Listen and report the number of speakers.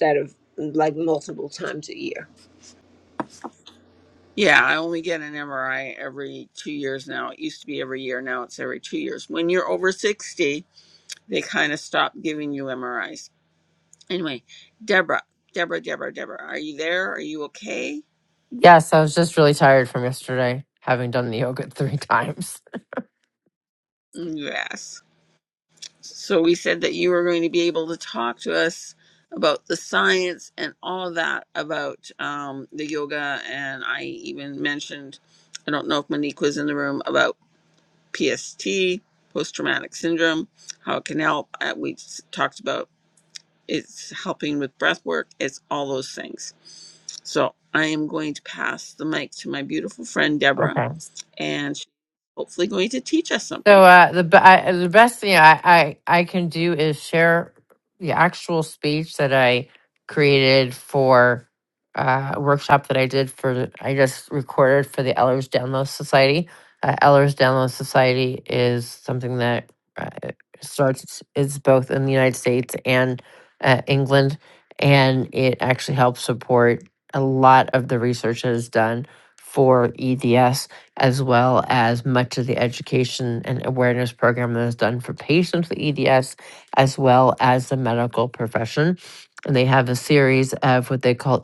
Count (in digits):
3